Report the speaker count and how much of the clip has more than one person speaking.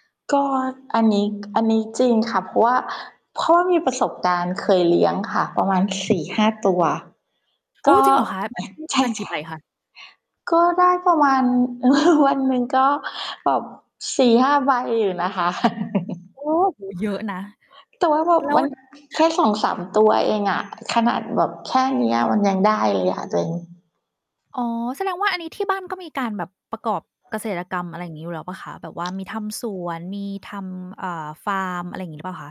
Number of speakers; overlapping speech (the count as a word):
two, about 3%